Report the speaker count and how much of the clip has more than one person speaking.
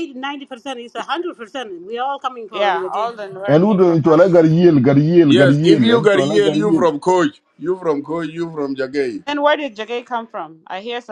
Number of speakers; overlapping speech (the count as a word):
four, about 26%